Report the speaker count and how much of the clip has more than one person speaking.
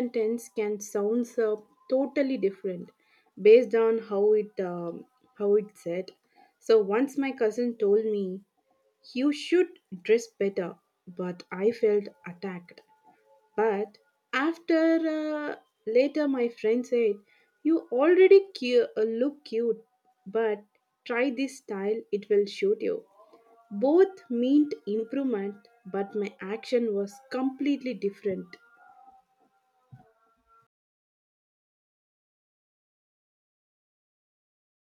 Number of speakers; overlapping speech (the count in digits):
1, no overlap